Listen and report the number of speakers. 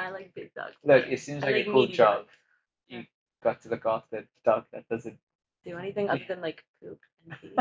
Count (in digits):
2